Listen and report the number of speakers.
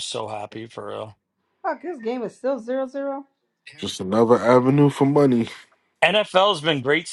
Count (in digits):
3